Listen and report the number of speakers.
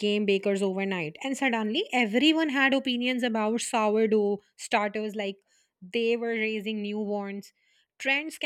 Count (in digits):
1